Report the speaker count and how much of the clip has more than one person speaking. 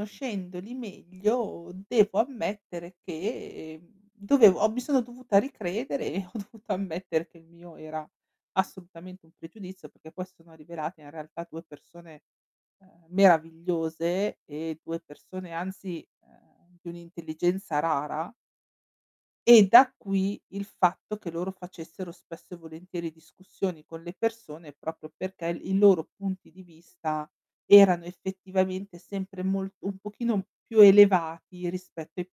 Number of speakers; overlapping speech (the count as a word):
one, no overlap